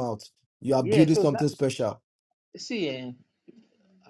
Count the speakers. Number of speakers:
2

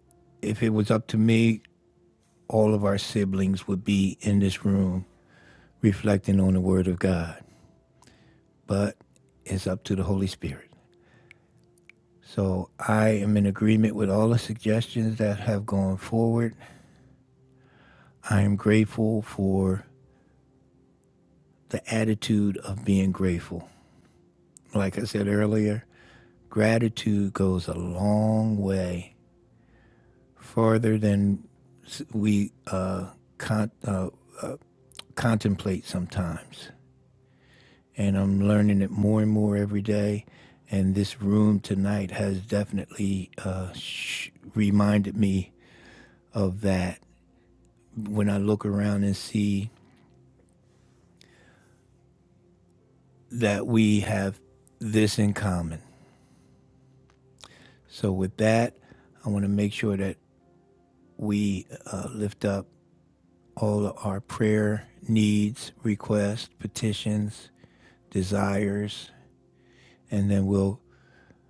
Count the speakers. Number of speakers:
1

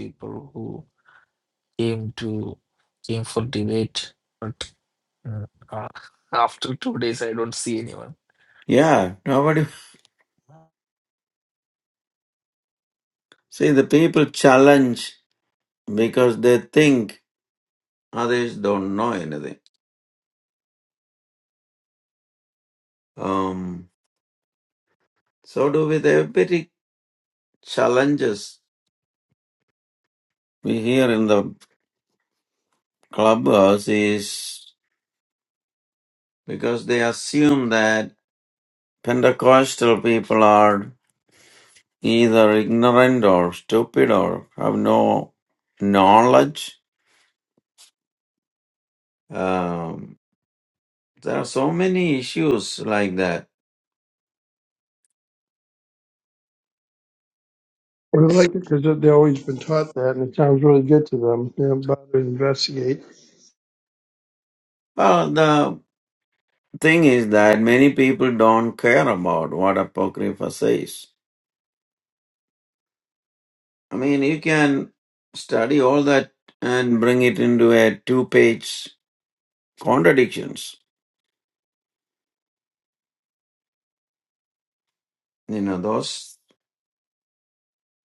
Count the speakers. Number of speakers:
3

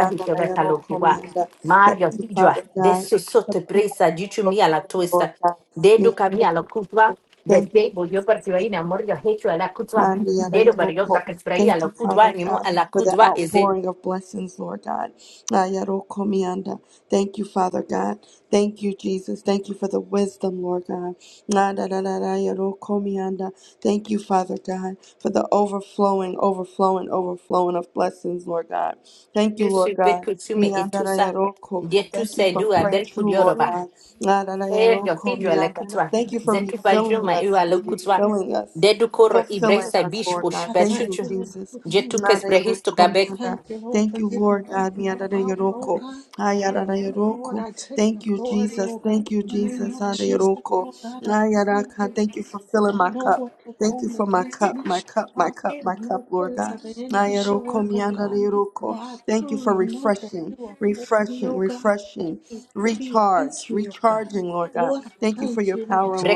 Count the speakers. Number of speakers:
3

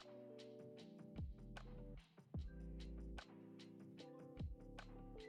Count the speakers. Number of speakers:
0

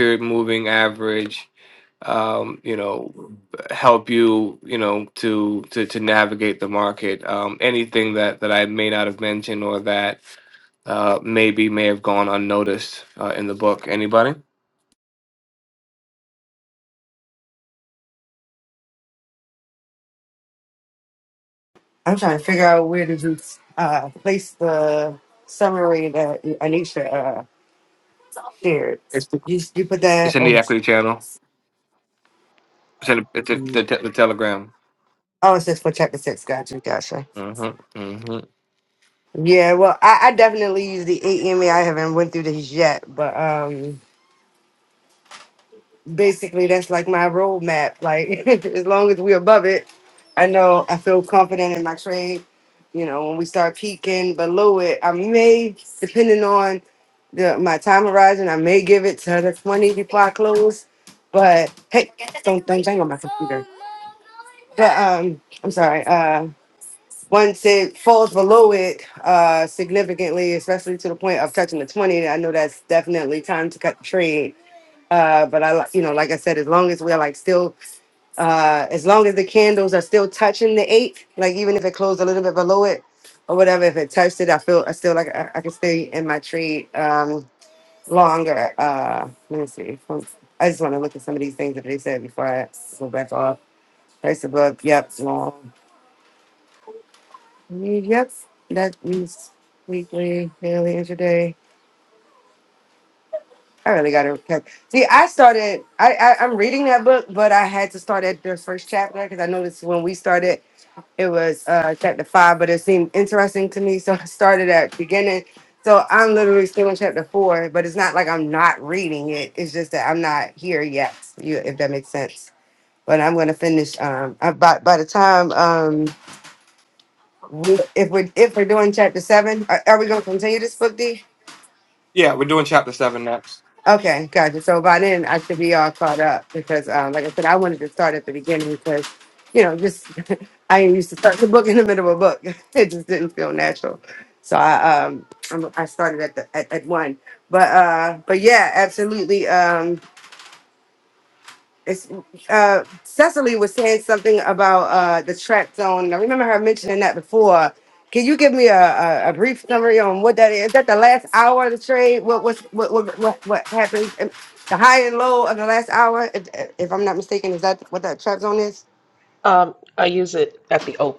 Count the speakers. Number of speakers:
3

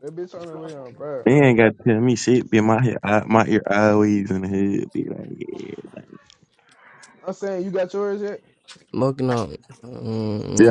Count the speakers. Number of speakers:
3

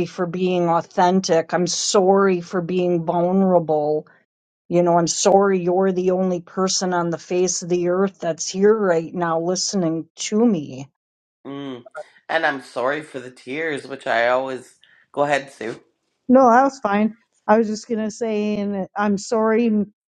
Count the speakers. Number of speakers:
3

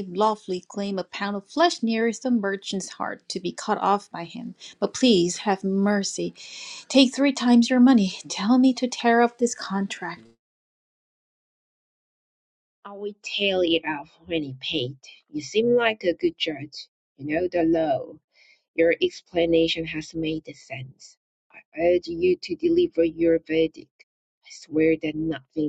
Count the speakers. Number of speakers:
2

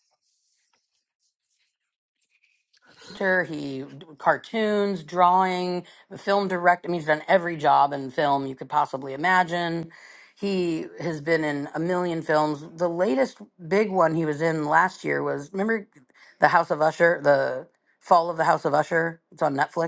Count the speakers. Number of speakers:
1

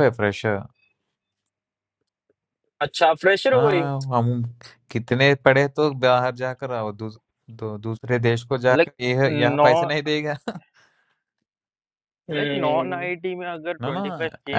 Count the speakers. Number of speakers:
3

